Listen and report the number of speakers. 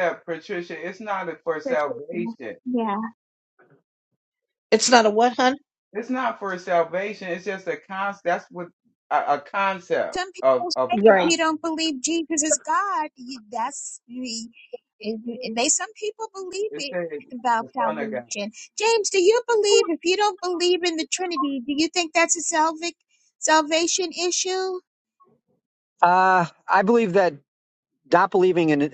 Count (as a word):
four